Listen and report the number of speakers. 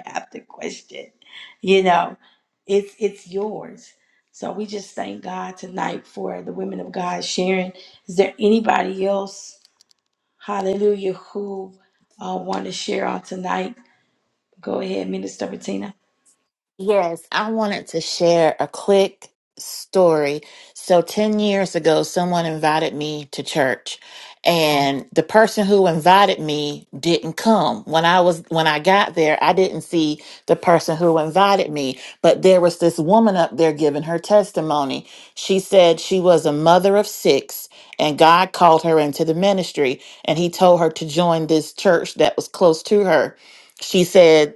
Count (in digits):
2